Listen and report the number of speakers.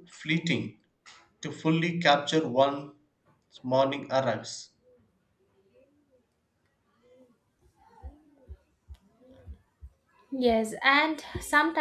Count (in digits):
2